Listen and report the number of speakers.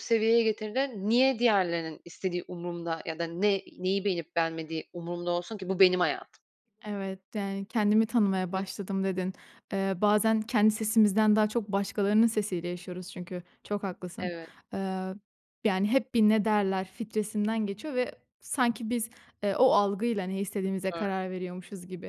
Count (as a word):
two